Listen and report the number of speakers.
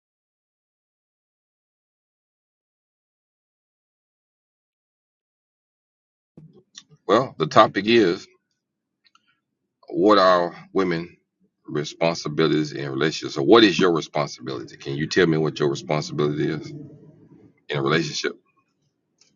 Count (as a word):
one